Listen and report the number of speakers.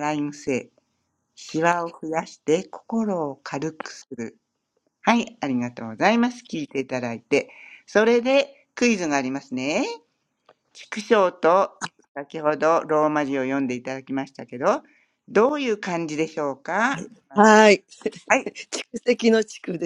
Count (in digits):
2